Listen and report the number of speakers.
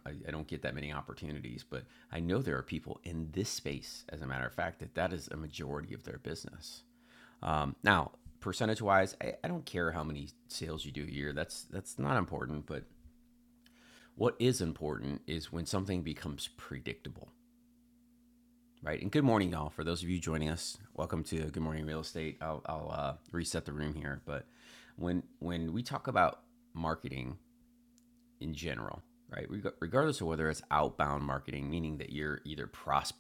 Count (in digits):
1